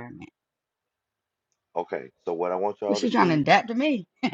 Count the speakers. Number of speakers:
two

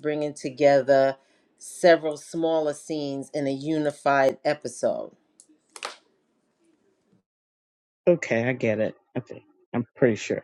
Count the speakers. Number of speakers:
two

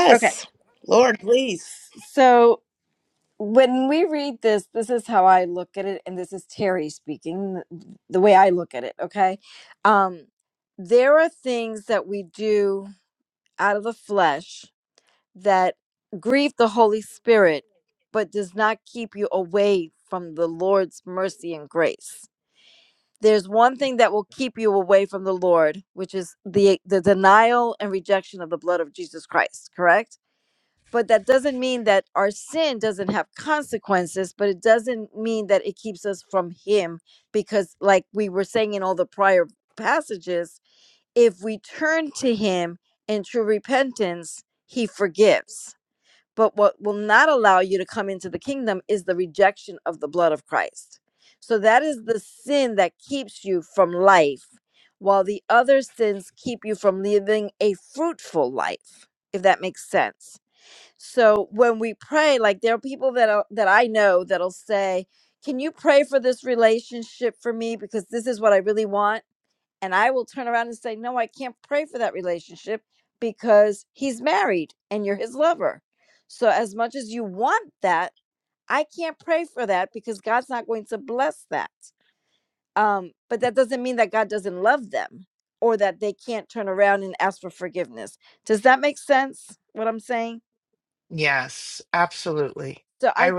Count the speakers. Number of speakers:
three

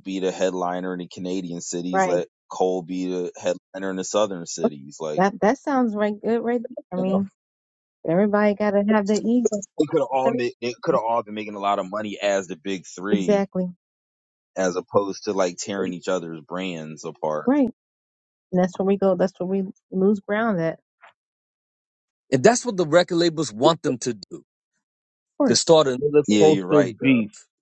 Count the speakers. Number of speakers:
three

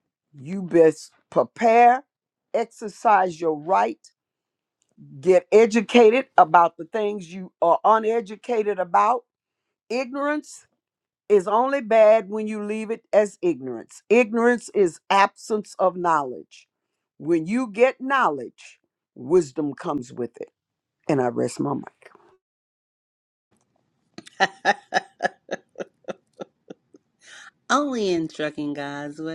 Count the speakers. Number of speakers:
two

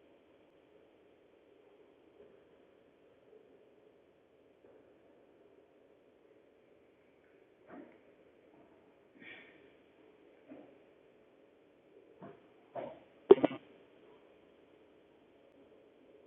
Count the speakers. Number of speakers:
zero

